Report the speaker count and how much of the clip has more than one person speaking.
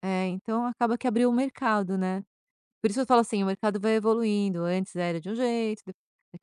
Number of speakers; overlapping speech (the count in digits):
1, no overlap